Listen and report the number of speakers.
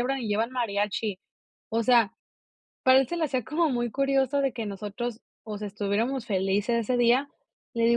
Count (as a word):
one